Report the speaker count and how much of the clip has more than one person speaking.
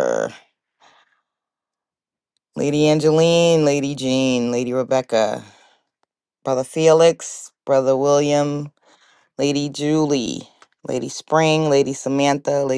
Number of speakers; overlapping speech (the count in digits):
1, no overlap